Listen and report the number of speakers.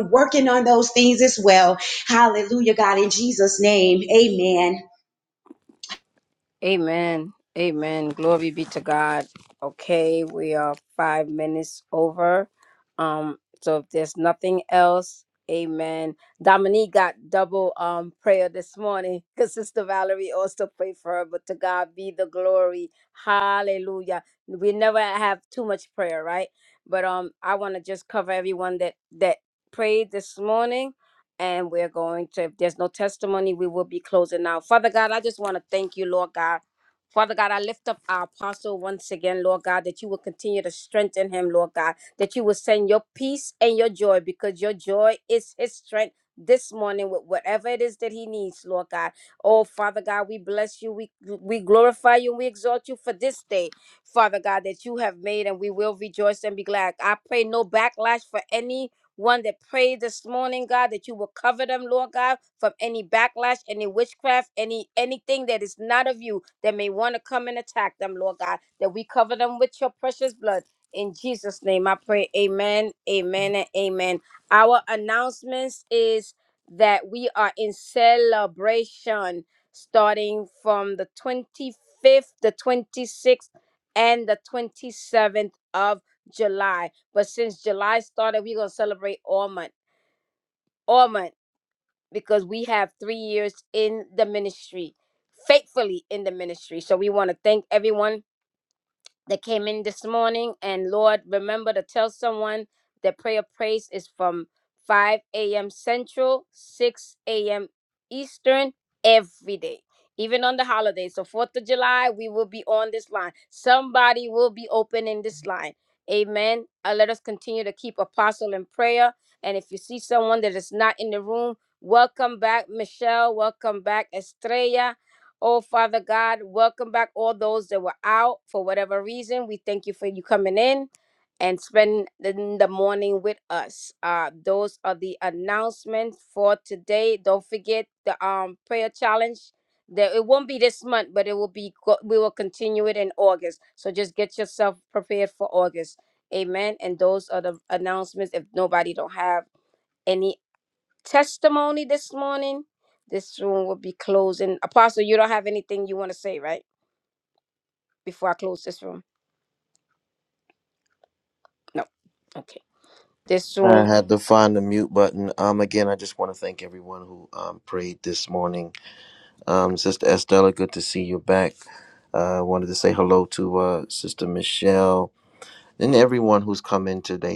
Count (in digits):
3